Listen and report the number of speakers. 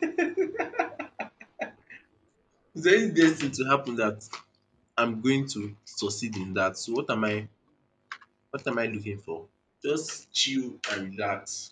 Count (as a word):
one